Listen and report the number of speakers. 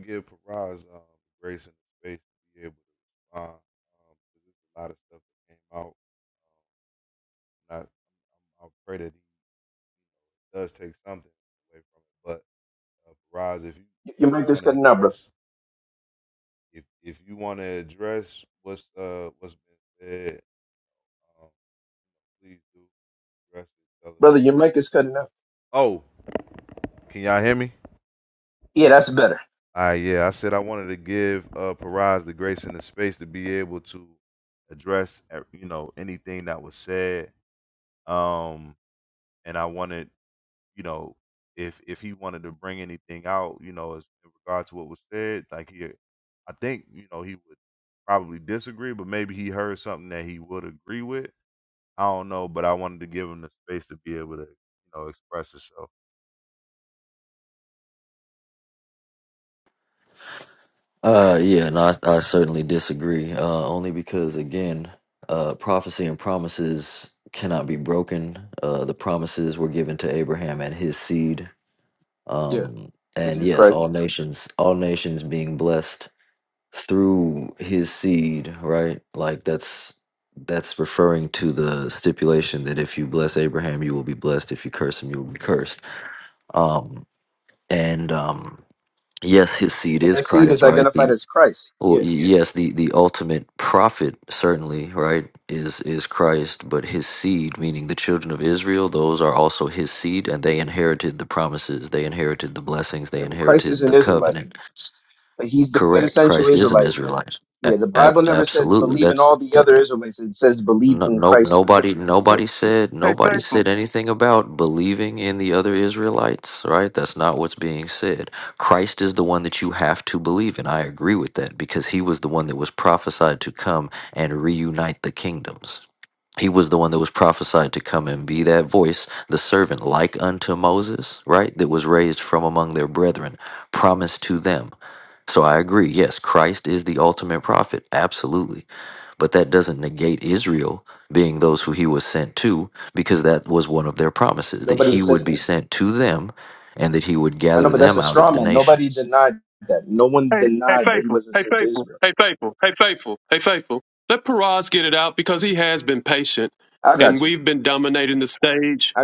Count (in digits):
4